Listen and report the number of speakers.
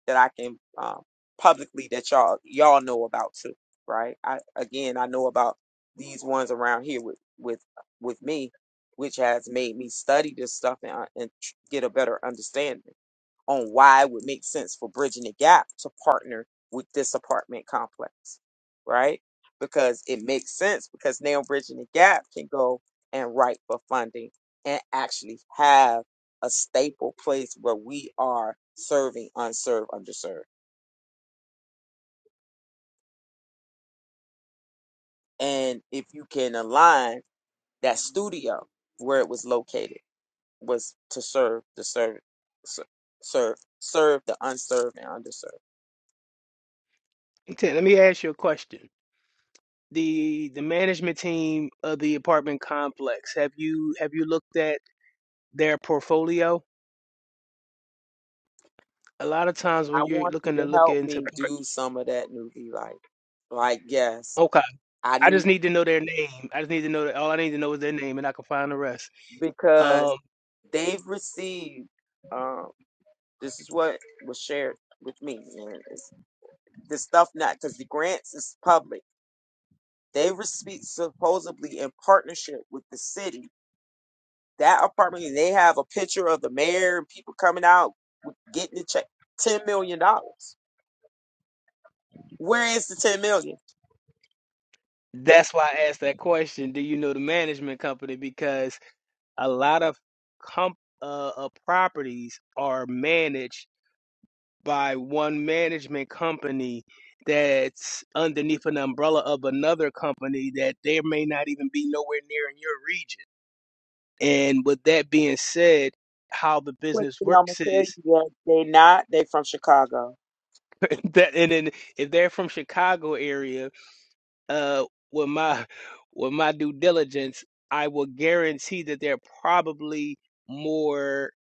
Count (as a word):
two